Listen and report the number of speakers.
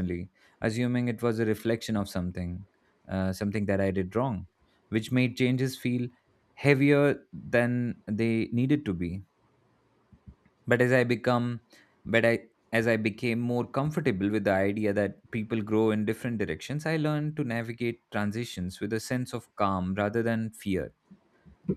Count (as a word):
one